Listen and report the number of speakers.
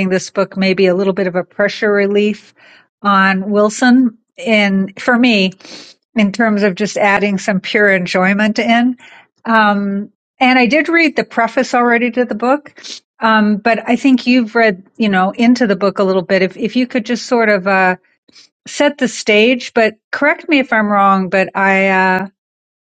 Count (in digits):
1